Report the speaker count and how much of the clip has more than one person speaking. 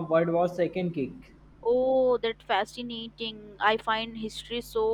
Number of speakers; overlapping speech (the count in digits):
2, no overlap